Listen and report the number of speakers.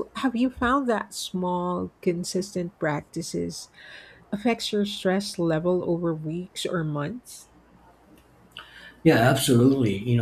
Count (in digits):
2